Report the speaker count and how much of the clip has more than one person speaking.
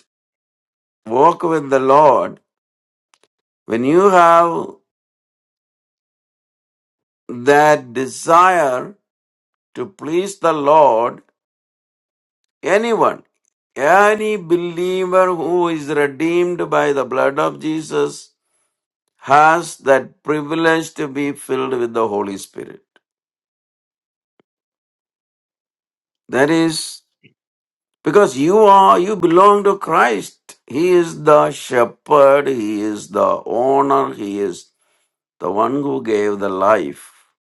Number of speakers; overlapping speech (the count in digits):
1, no overlap